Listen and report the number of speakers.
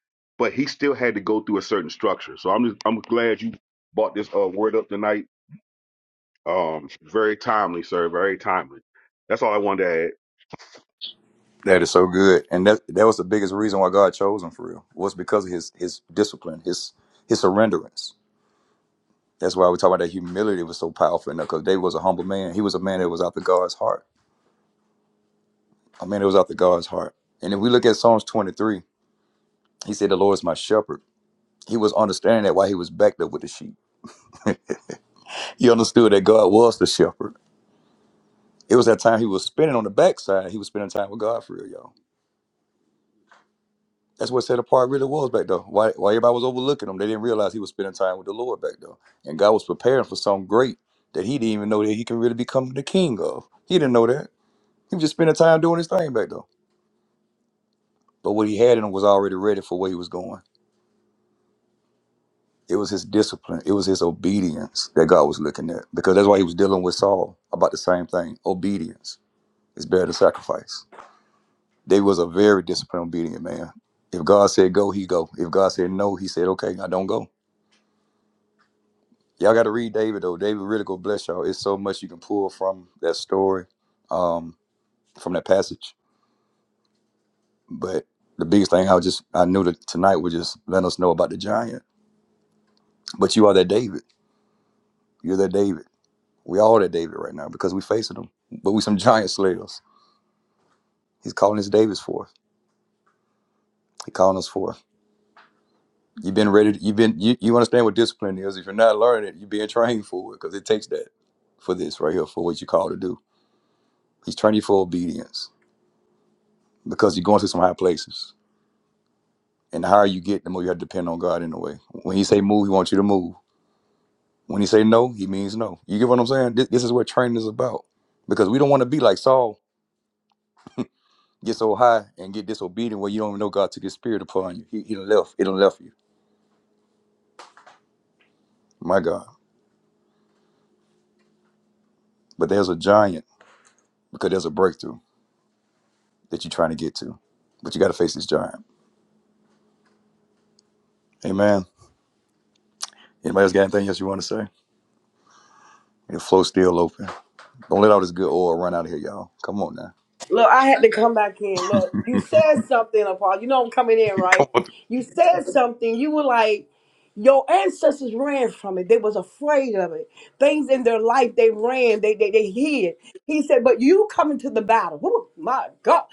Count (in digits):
3